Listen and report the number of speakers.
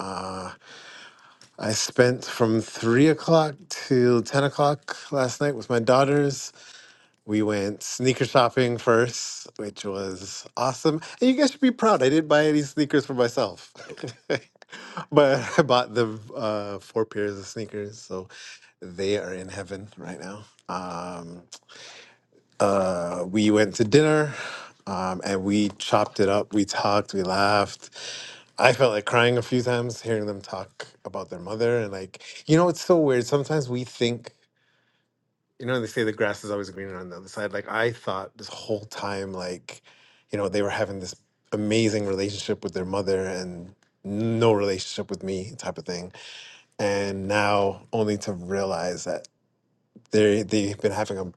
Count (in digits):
1